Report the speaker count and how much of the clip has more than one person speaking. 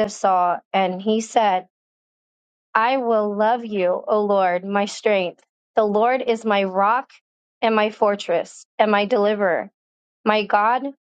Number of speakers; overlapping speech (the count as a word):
one, no overlap